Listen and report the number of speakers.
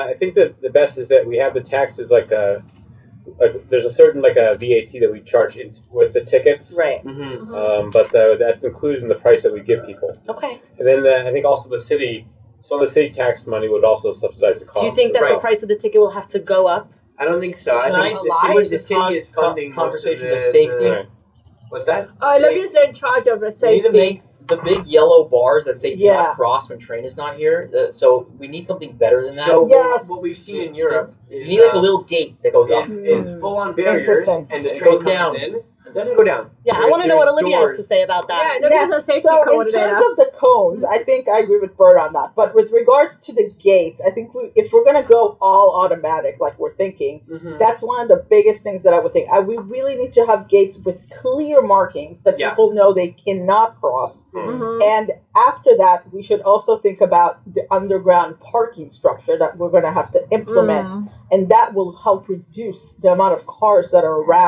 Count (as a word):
six